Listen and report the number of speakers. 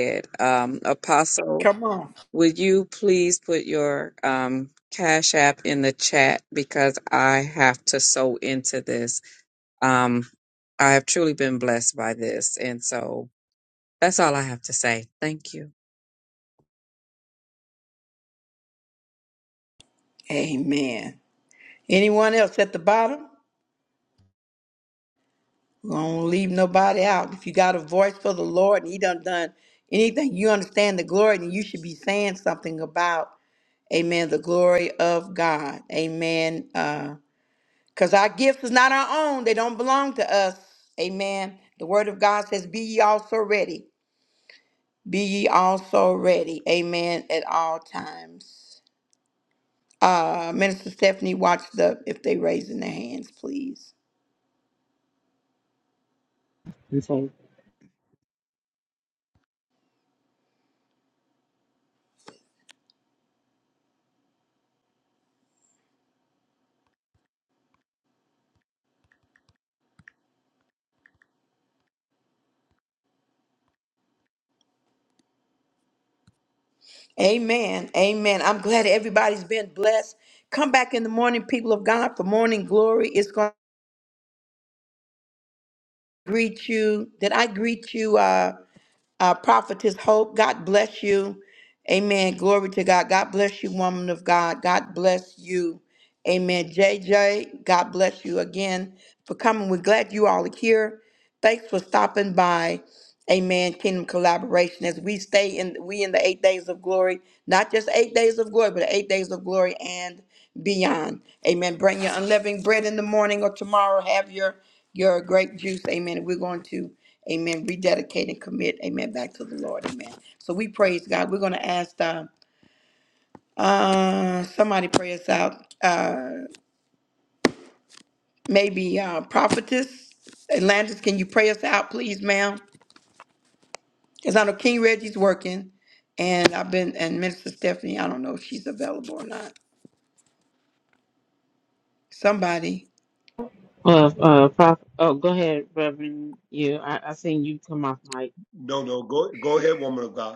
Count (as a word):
four